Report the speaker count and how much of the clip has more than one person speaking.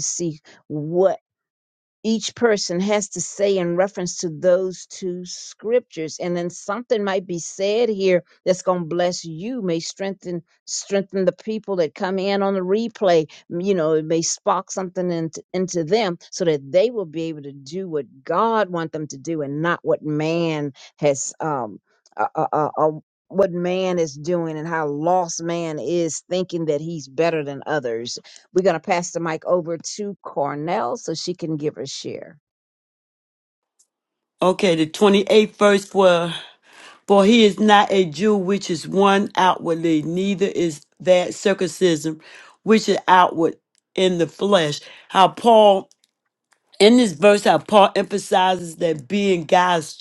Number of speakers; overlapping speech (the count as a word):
two, no overlap